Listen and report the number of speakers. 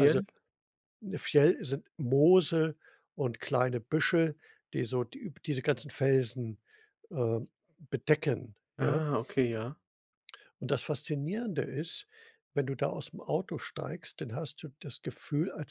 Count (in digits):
2